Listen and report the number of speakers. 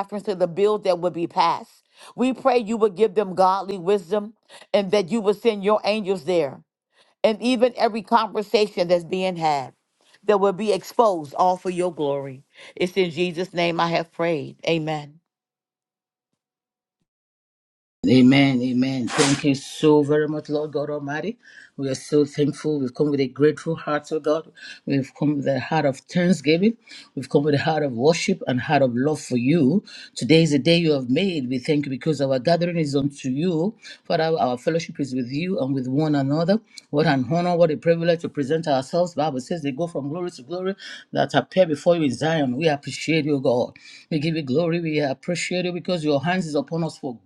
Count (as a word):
two